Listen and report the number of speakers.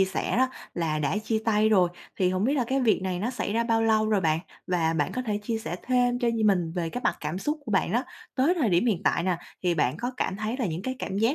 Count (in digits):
1